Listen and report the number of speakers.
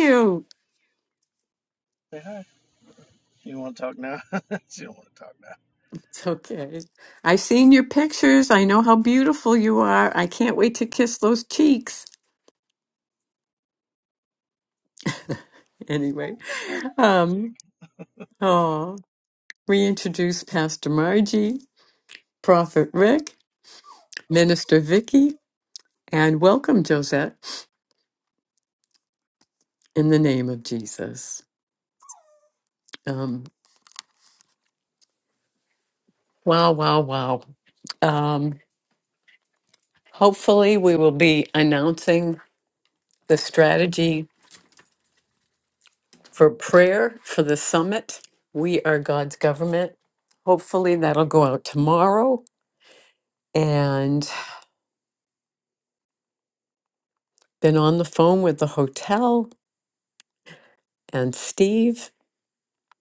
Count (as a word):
two